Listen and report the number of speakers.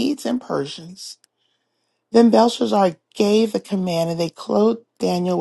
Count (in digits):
1